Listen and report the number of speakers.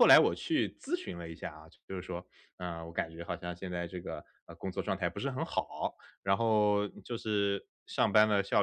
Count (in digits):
1